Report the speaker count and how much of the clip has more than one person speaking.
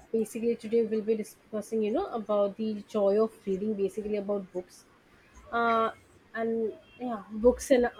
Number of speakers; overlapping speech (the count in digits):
1, no overlap